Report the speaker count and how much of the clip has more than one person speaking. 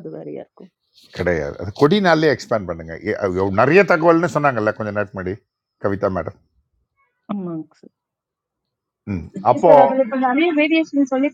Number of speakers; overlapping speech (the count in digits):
3, about 2%